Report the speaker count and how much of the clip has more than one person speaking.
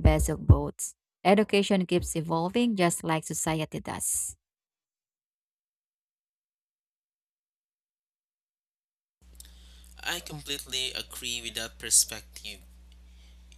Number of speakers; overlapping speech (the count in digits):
2, no overlap